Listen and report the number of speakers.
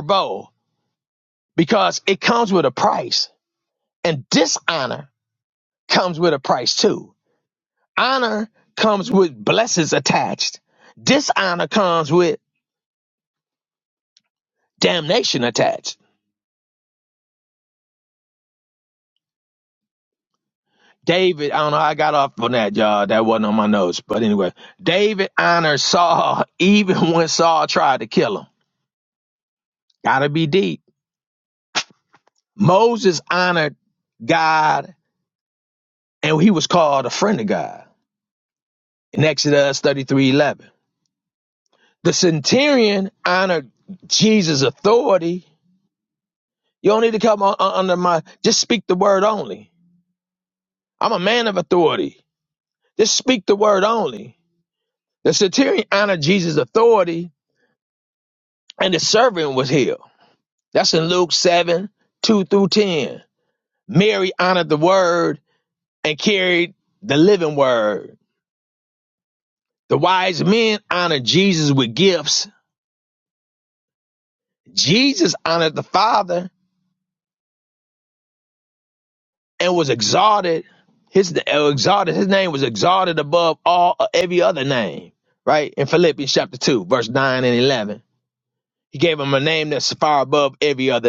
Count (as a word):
one